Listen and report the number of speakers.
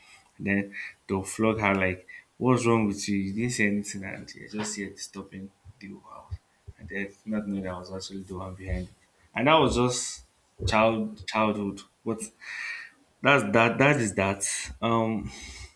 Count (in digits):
1